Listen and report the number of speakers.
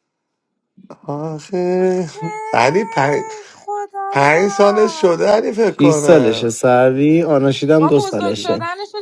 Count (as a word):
three